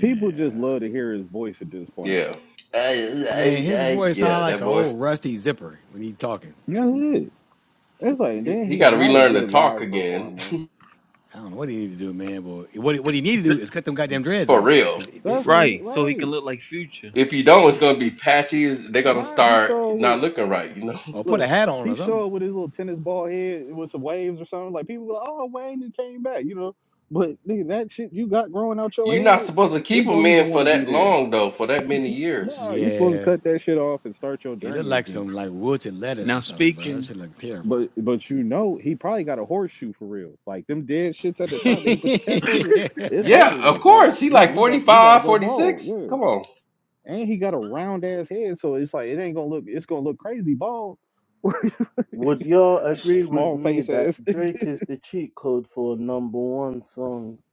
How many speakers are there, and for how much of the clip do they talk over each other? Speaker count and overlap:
five, about 29%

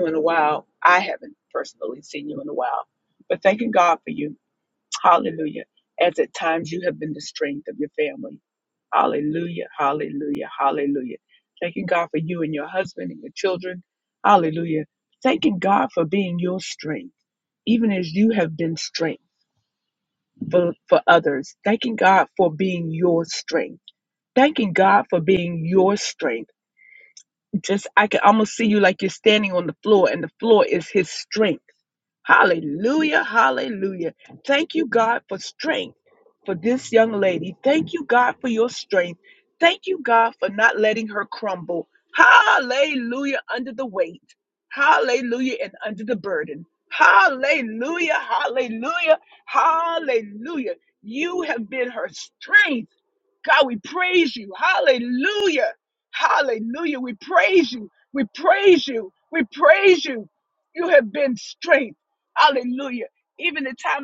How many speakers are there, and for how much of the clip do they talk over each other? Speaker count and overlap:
one, no overlap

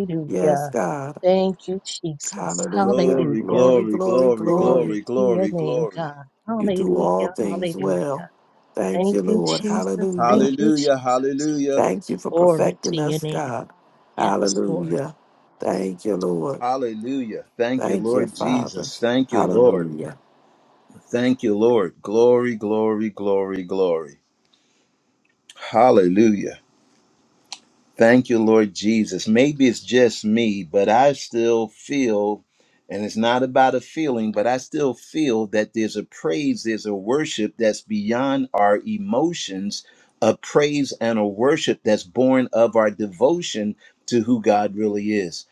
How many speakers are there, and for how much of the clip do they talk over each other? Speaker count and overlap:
three, about 25%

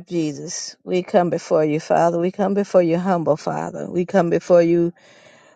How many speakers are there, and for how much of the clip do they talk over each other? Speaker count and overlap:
one, no overlap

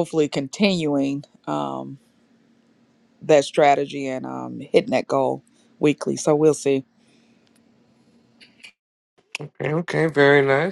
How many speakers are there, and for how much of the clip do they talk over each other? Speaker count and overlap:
two, no overlap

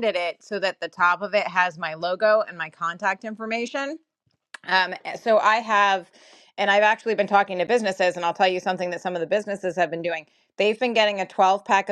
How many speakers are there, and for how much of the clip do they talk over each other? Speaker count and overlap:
one, no overlap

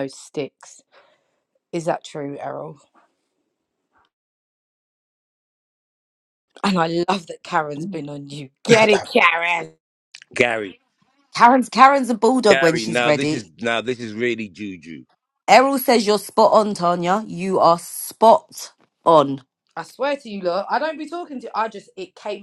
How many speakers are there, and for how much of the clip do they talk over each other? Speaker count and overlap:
three, about 4%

